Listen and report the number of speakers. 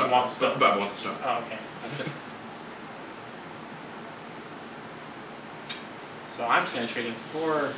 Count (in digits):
2